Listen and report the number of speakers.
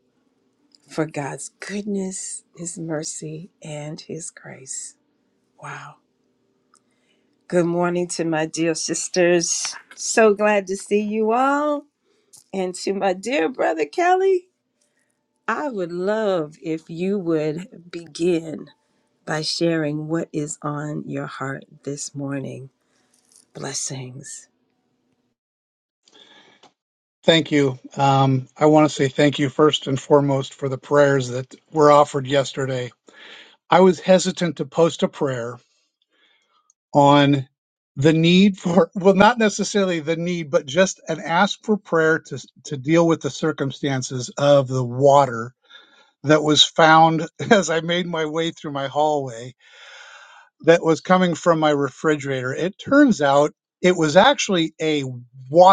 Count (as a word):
two